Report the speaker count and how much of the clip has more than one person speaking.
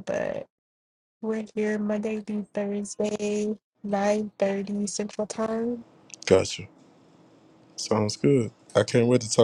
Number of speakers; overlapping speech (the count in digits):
2, no overlap